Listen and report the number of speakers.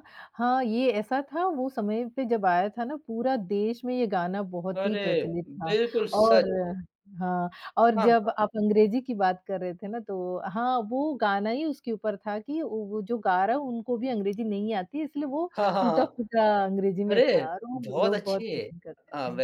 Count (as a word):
two